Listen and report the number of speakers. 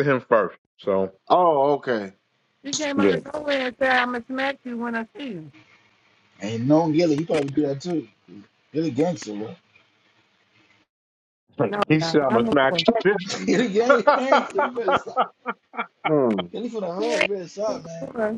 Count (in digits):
4